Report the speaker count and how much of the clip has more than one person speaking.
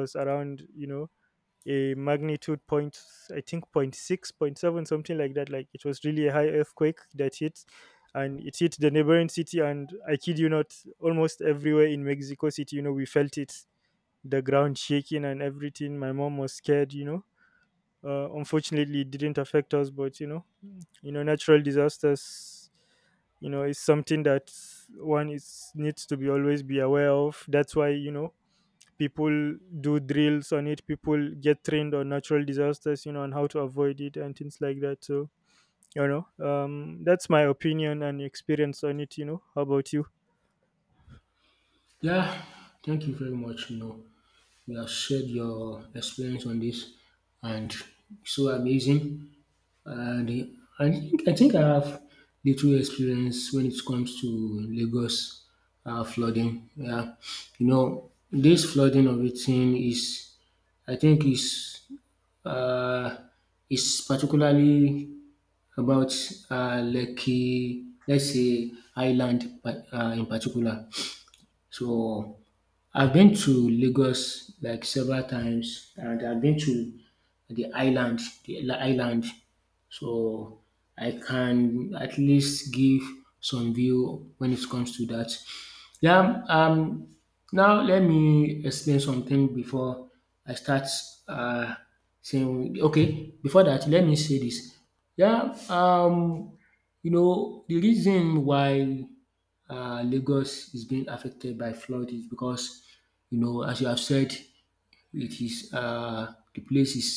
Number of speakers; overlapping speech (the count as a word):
two, no overlap